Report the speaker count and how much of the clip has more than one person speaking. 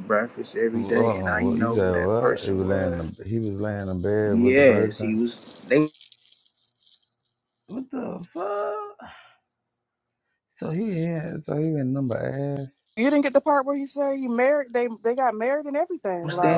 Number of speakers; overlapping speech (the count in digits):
3, about 22%